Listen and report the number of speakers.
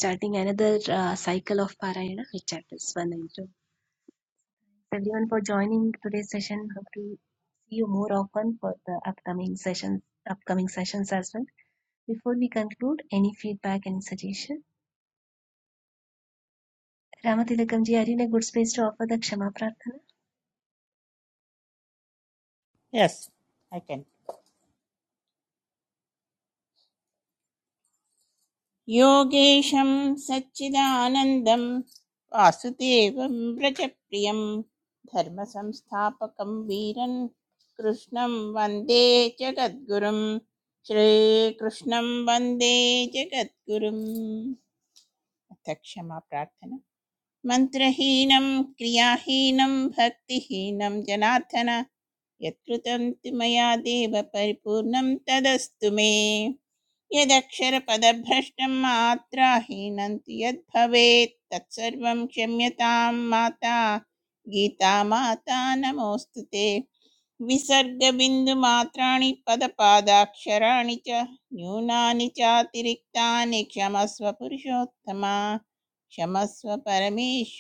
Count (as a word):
two